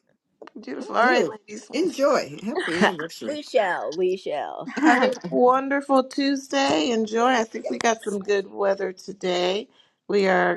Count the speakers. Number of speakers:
three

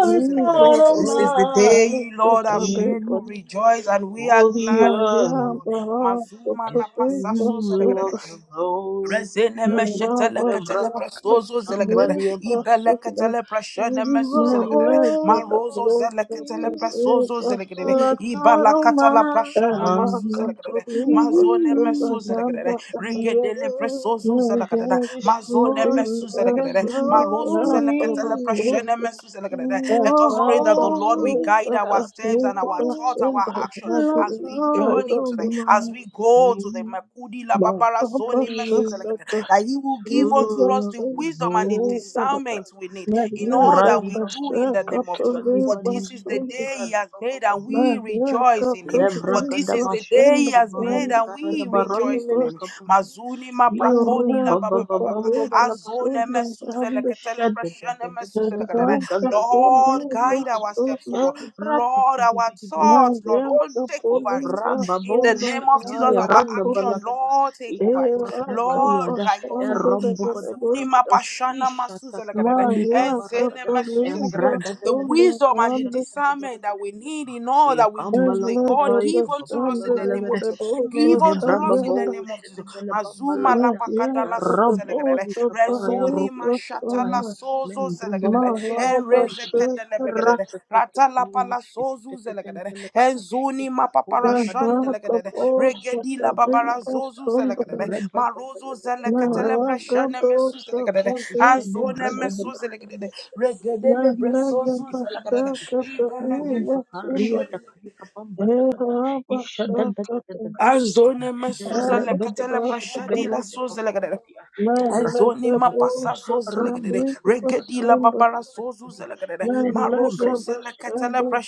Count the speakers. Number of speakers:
three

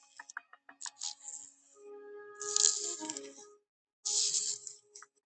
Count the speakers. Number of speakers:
zero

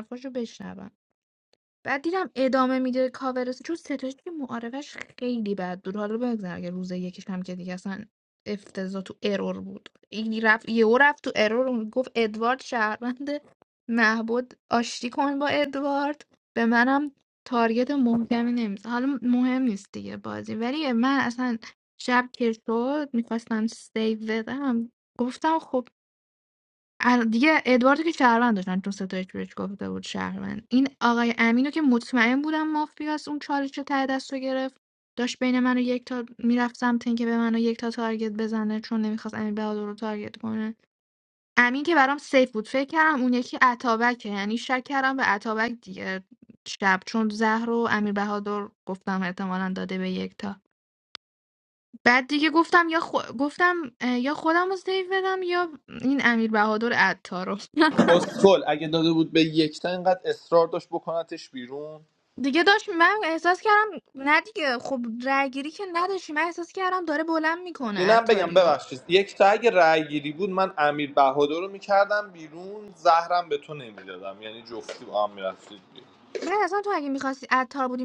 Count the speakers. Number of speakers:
two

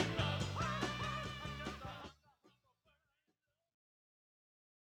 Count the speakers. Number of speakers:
zero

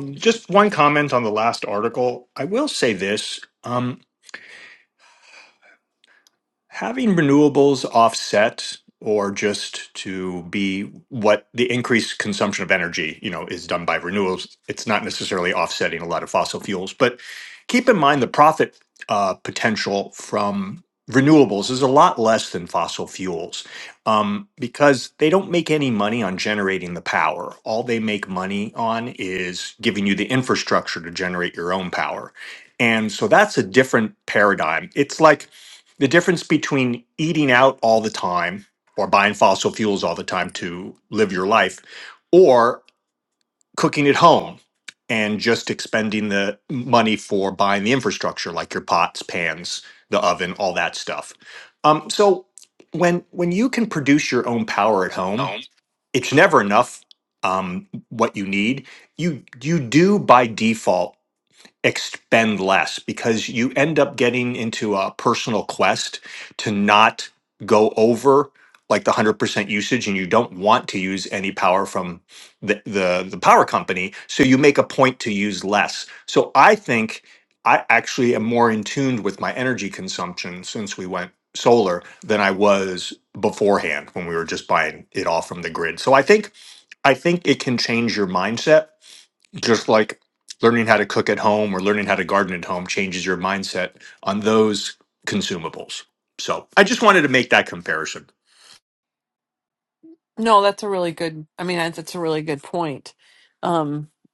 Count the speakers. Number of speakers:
two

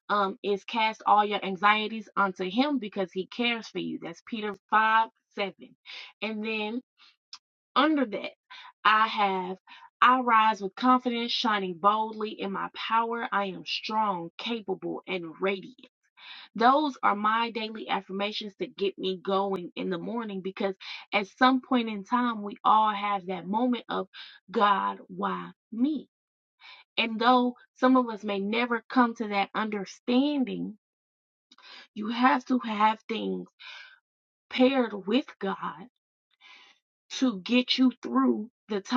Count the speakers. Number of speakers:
one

